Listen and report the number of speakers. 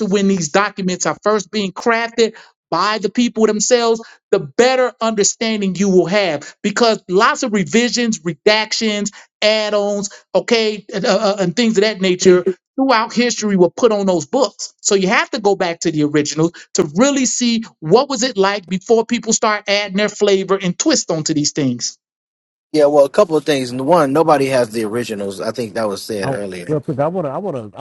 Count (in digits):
3